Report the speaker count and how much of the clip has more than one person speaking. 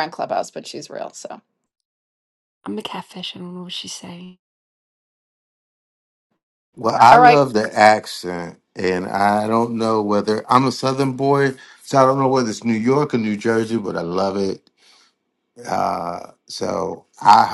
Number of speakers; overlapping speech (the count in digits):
3, about 2%